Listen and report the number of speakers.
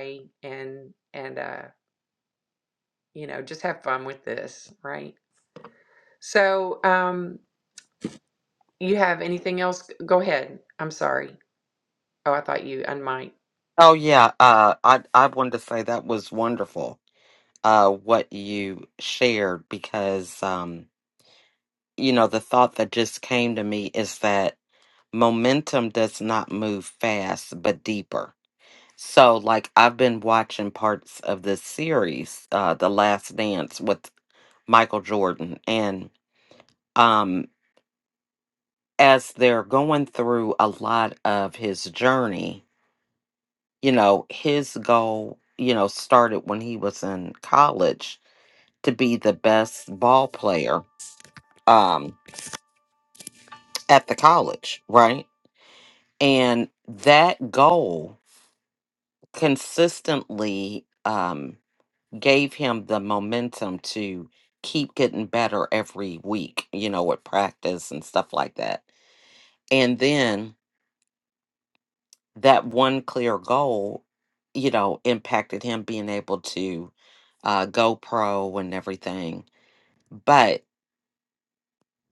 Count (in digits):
2